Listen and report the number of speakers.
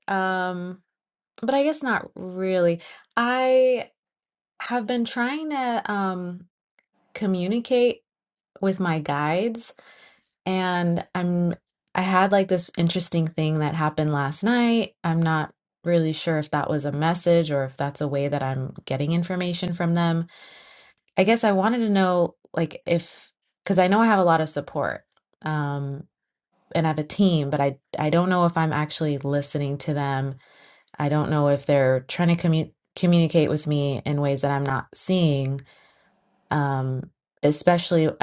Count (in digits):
1